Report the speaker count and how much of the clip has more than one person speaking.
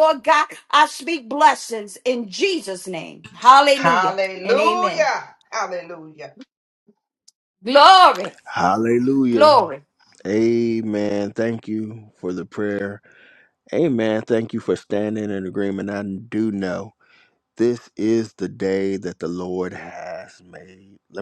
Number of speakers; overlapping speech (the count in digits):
3, about 4%